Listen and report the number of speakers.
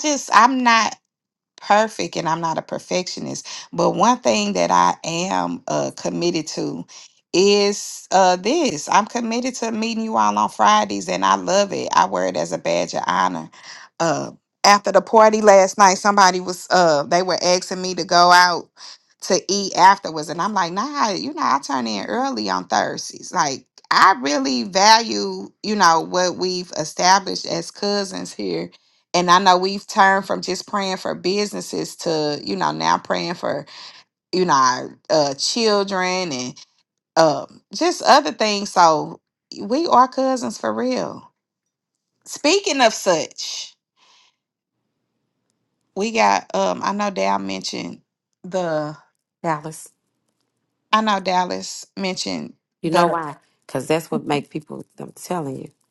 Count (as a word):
two